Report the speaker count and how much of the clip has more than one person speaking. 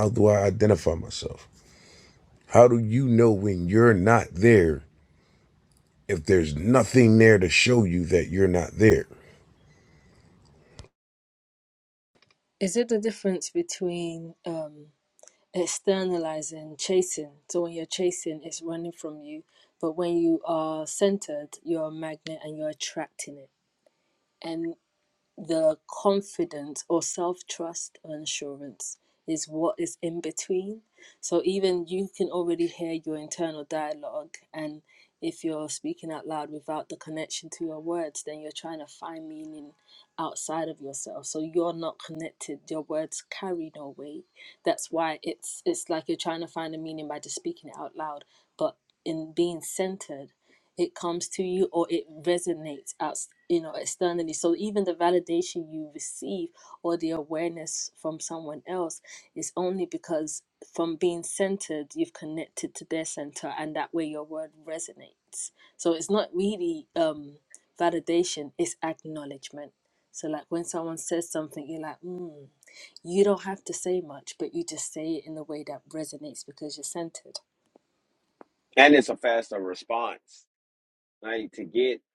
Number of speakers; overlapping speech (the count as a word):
three, no overlap